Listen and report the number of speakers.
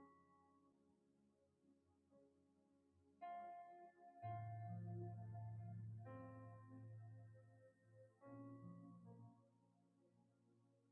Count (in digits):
0